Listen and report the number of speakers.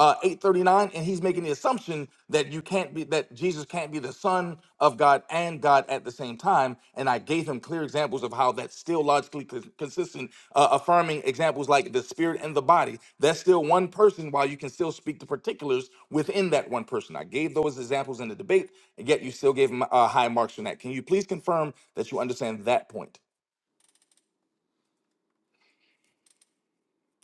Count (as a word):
one